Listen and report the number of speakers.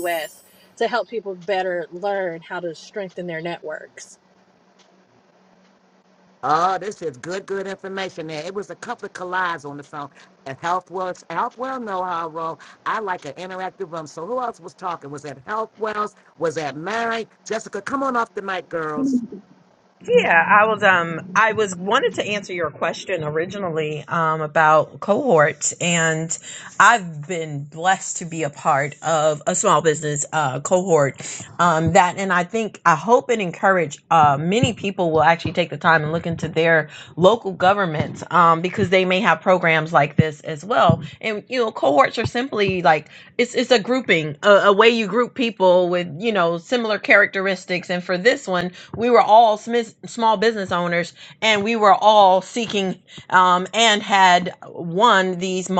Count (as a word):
three